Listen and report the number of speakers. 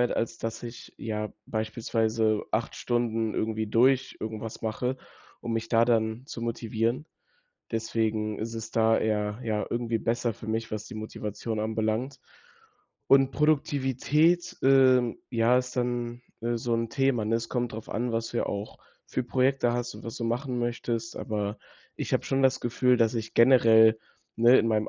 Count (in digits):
1